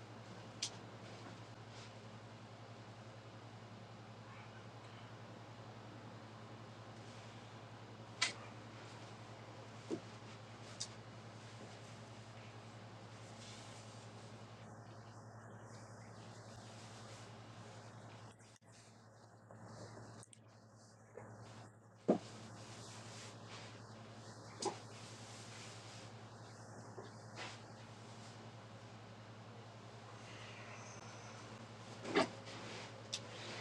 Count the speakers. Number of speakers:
0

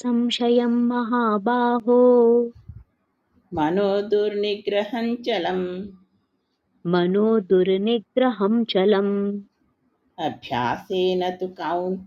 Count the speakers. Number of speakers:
2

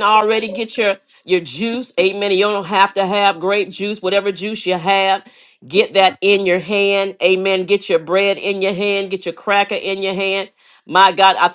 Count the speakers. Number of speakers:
1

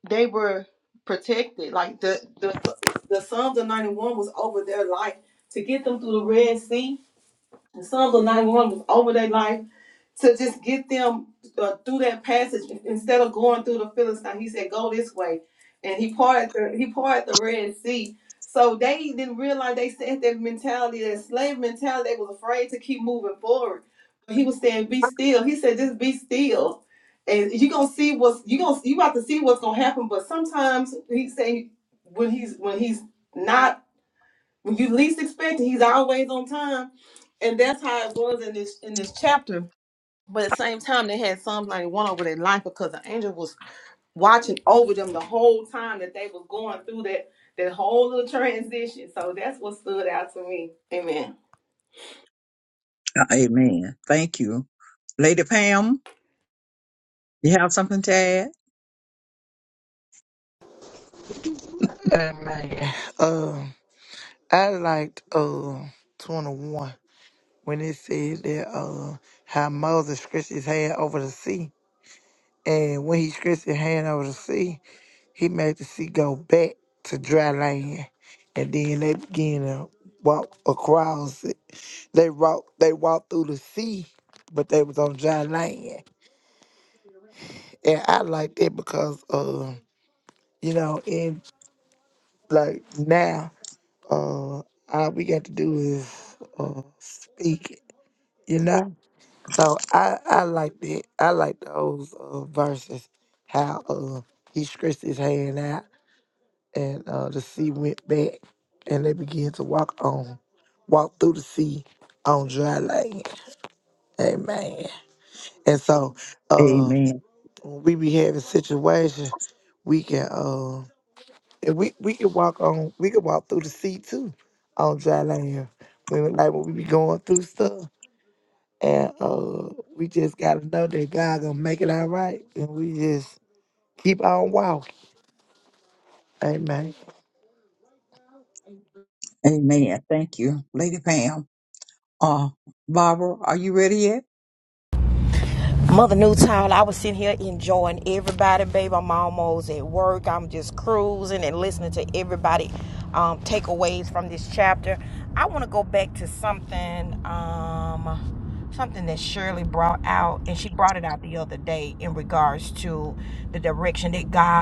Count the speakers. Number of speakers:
4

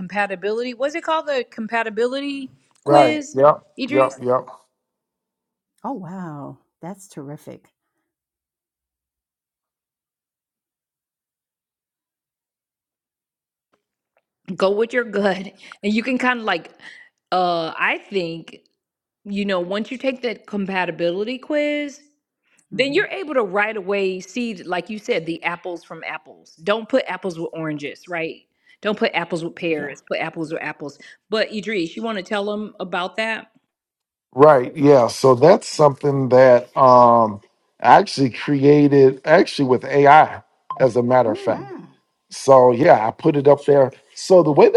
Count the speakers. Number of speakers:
3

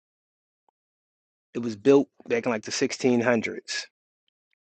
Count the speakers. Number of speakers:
1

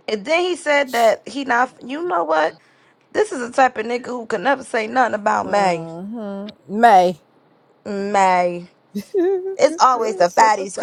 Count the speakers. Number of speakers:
2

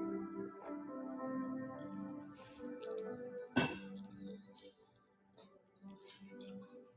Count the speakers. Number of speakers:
0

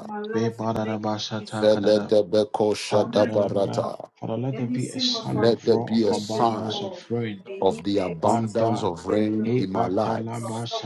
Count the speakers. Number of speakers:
3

